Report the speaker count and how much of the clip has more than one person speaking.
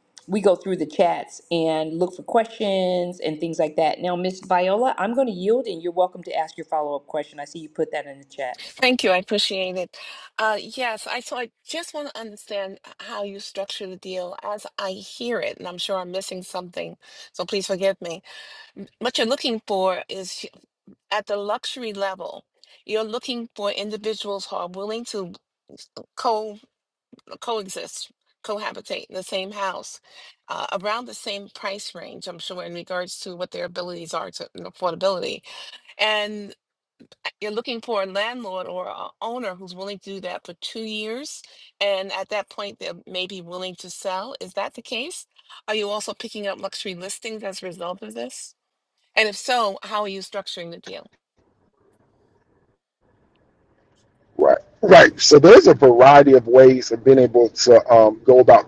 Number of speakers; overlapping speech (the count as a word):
three, no overlap